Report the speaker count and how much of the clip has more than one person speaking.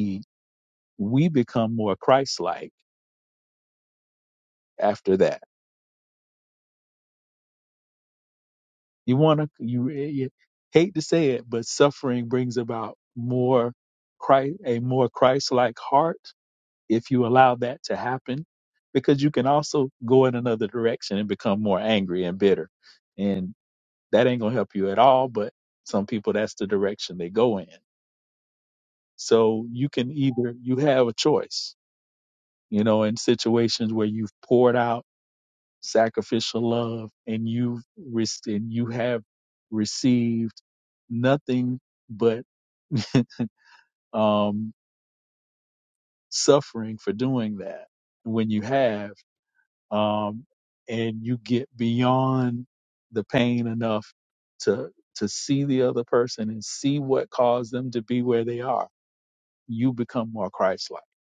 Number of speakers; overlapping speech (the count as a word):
one, no overlap